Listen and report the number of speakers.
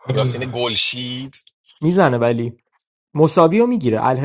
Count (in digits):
2